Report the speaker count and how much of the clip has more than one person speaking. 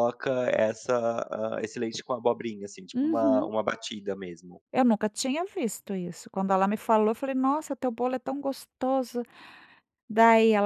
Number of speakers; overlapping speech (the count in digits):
2, about 5%